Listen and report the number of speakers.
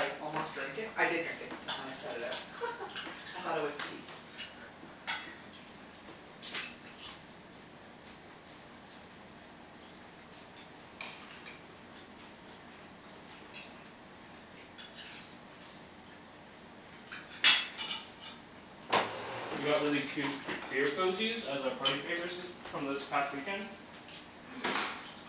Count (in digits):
2